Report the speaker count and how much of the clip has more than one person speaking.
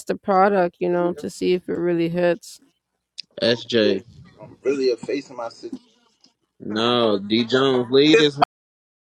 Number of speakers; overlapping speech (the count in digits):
3, about 9%